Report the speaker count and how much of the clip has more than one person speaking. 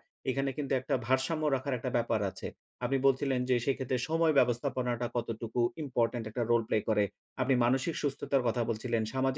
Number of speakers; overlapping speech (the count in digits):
1, no overlap